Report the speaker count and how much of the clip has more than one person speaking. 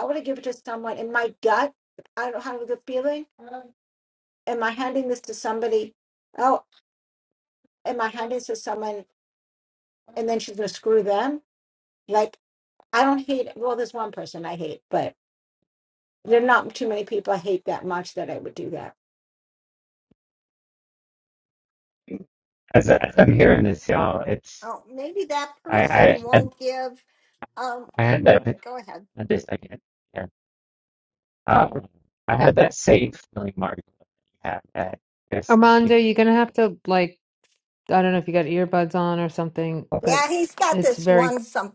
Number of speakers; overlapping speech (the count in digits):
4, about 4%